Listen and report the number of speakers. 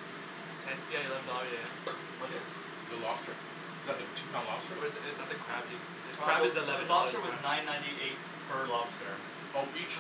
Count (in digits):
3